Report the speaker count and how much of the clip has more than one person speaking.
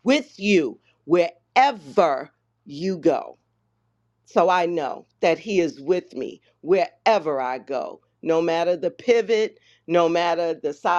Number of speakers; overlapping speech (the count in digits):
1, no overlap